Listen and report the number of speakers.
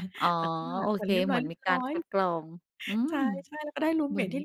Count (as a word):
two